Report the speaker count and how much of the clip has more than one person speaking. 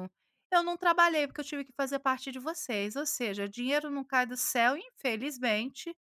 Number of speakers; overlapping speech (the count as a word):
one, no overlap